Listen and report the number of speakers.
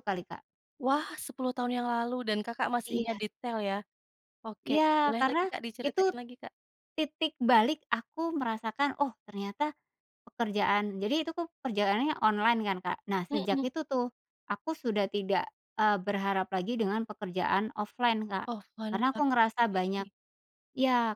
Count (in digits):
2